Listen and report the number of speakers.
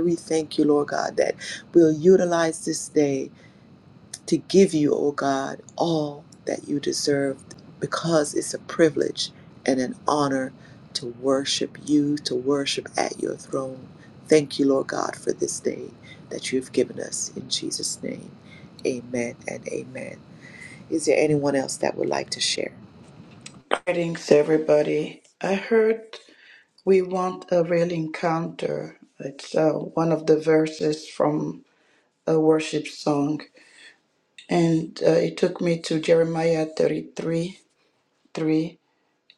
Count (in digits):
2